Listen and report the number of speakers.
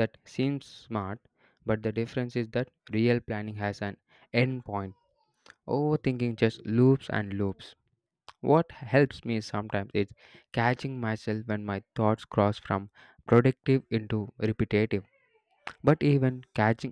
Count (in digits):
1